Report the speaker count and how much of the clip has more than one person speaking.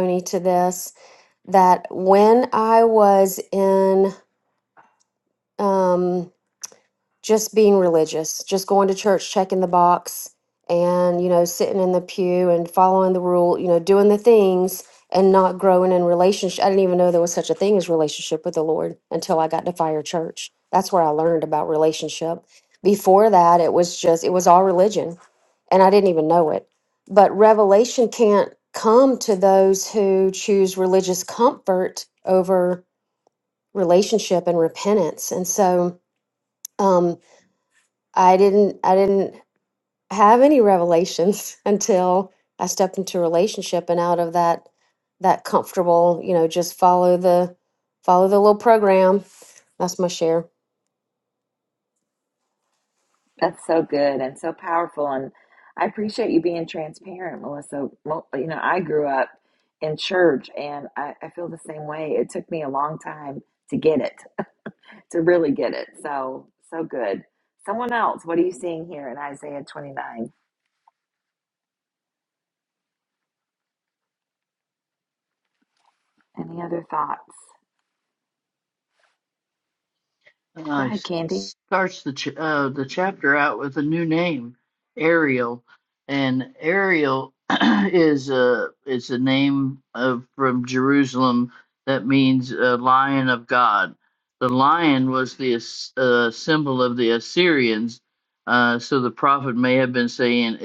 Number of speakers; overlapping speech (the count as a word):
three, under 1%